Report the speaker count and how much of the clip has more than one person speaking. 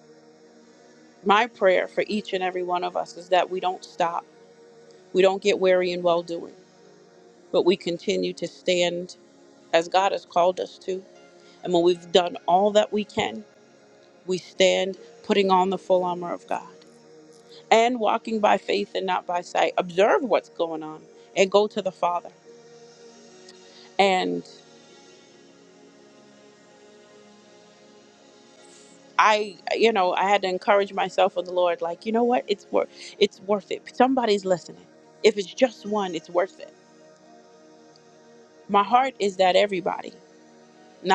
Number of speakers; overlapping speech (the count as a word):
one, no overlap